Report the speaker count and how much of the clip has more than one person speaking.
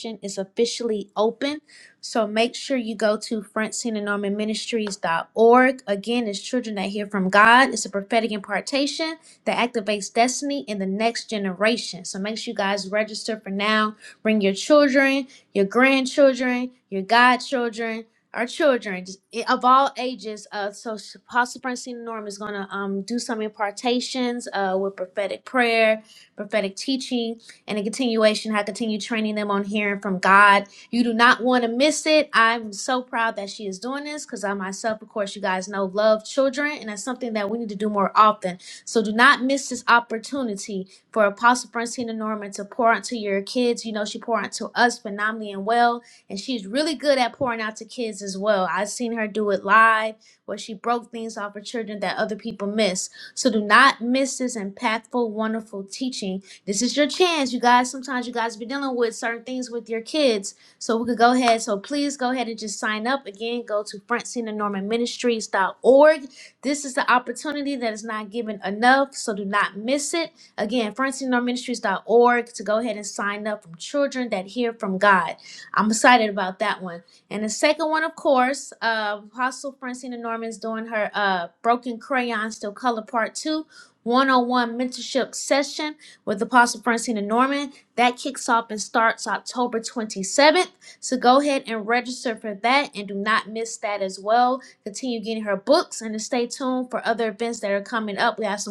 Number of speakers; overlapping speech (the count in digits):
1, no overlap